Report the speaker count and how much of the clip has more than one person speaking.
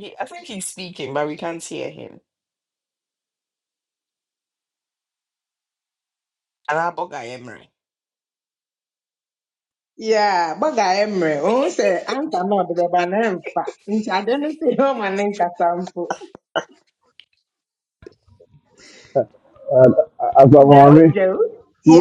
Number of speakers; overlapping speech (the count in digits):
3, about 3%